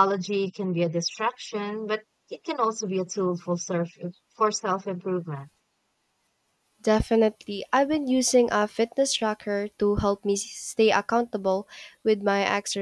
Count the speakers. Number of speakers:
2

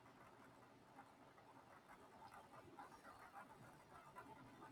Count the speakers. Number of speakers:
0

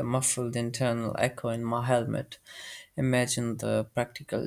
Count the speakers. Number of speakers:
1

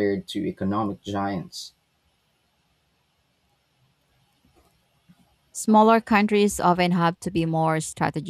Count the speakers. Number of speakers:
2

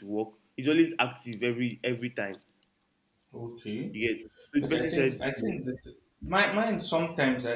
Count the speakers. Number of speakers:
2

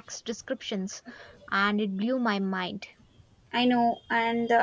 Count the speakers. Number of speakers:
2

